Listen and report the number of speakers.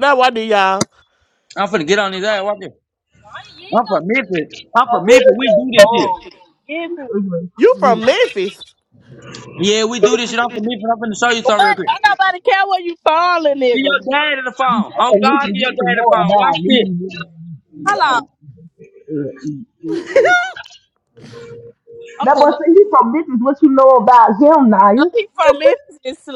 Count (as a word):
four